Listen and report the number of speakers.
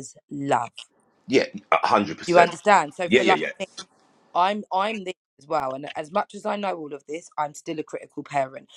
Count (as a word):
two